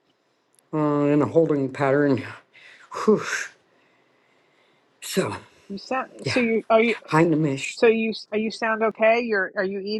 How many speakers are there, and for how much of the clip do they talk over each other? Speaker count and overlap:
two, about 2%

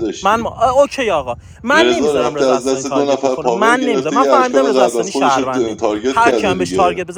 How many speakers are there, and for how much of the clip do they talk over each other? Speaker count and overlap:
two, about 71%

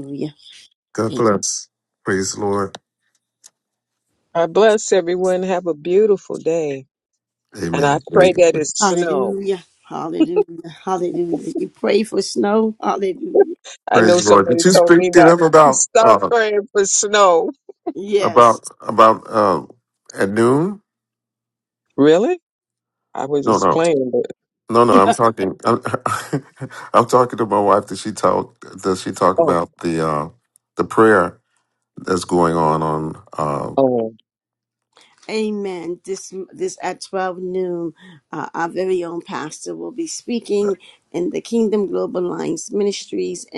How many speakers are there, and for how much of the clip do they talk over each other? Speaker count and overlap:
three, about 9%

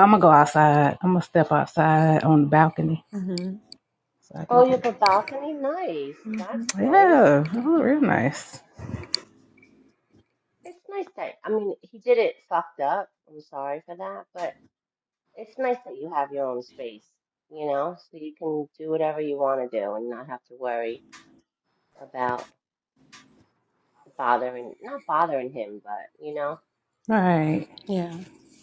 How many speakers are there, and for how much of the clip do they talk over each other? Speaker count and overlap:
three, about 4%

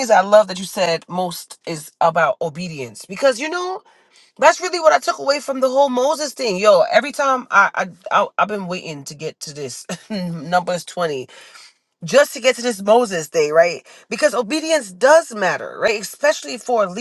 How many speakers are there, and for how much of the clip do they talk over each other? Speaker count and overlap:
one, no overlap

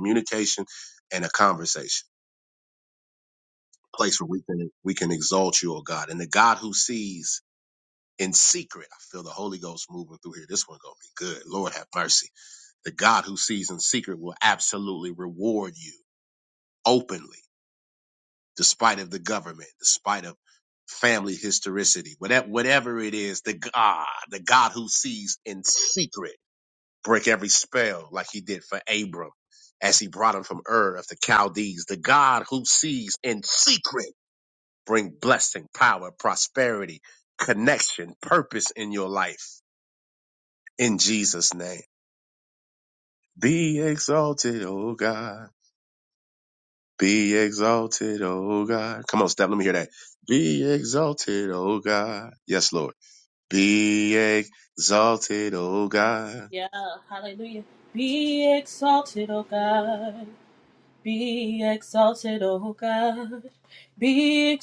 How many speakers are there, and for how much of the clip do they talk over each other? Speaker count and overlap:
two, no overlap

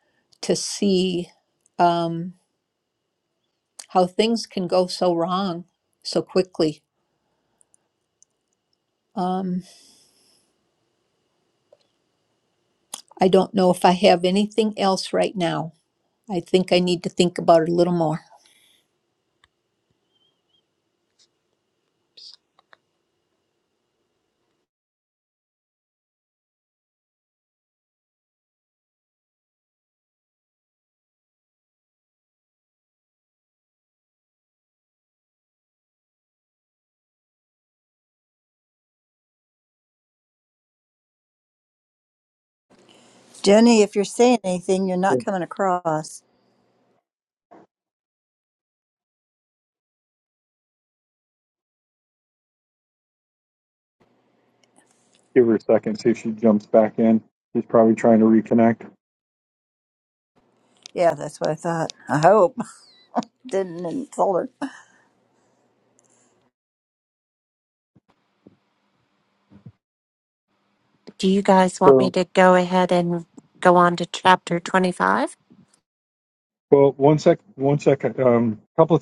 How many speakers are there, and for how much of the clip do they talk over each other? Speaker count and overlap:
four, under 1%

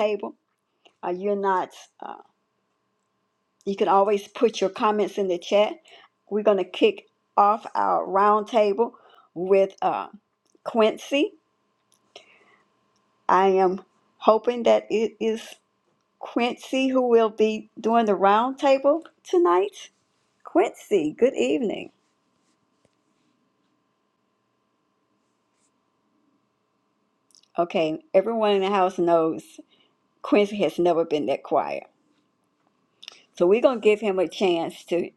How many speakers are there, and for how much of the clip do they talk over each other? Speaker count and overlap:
one, no overlap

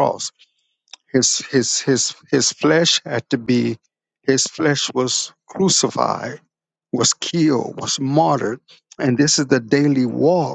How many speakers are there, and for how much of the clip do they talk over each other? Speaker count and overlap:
one, no overlap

